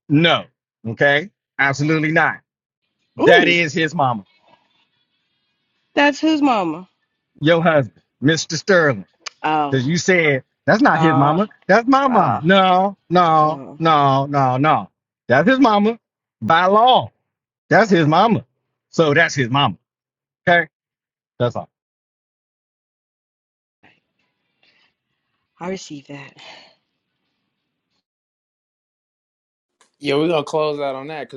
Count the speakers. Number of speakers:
3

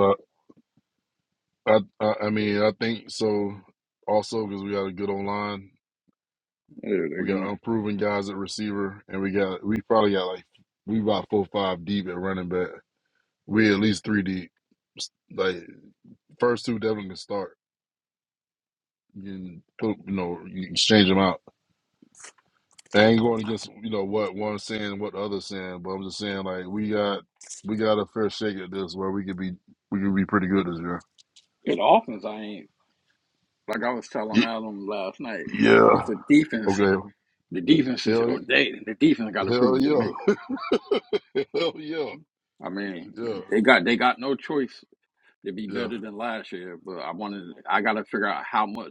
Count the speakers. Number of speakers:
2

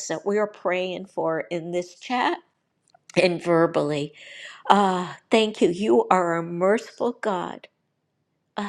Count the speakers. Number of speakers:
1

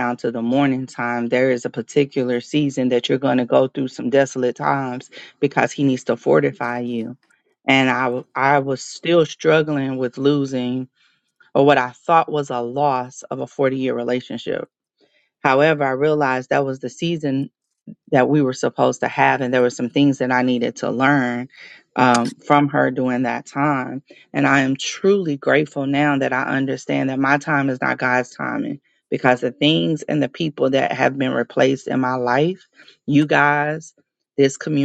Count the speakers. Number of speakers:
1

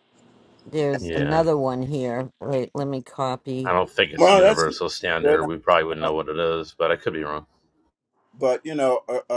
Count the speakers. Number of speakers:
3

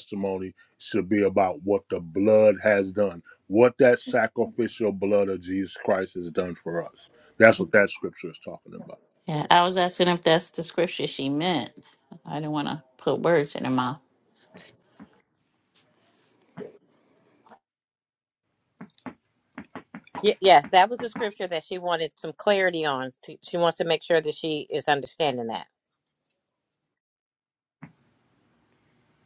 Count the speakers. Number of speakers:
3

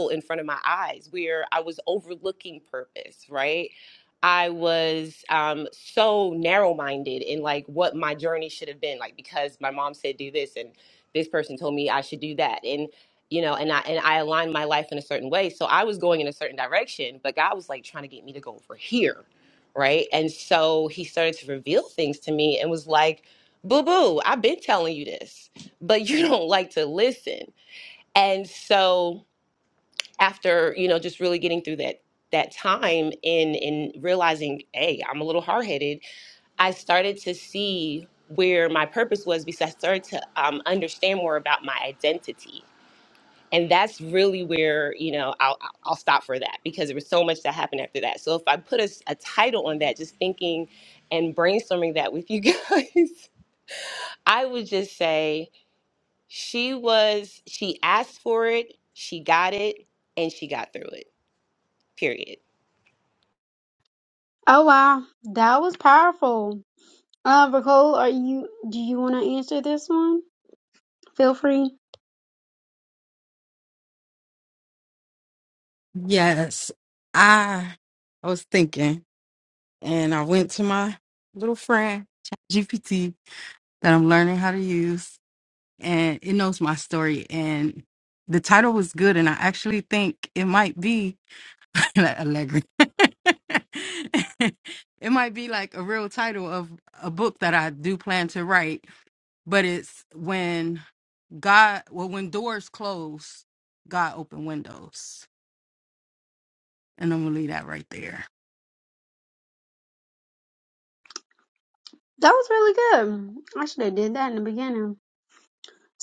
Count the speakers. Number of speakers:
3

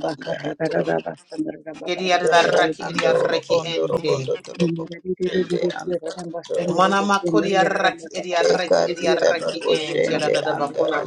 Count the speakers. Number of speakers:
3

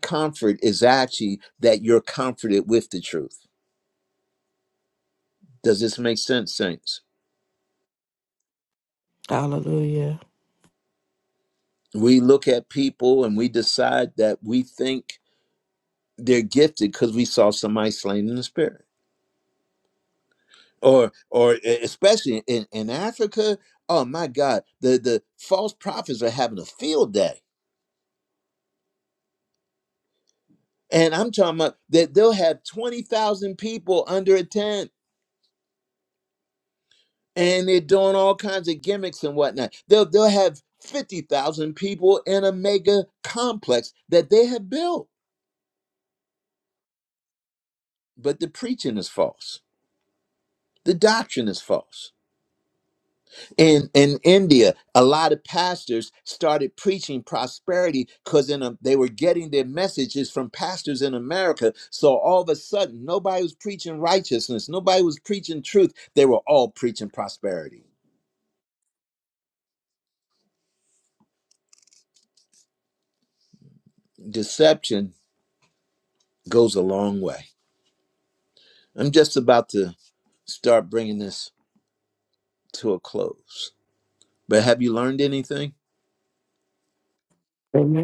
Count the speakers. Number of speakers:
2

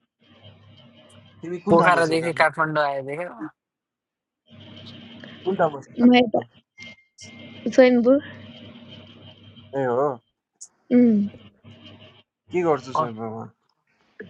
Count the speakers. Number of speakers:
3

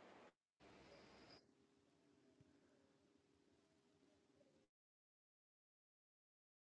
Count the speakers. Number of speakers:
0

